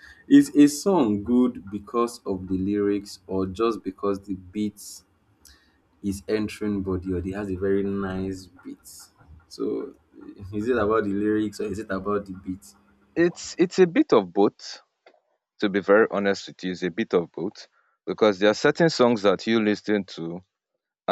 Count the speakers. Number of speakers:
two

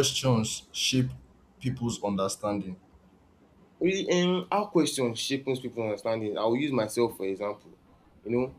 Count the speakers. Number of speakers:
two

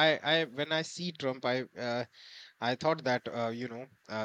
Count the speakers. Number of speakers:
one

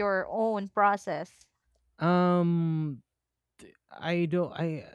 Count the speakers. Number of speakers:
two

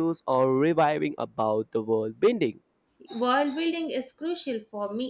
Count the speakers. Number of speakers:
two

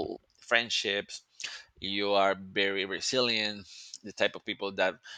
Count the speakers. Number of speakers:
one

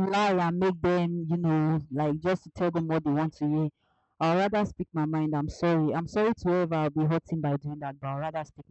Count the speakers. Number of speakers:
one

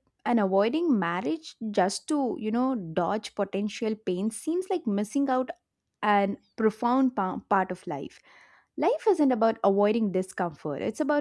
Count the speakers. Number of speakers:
one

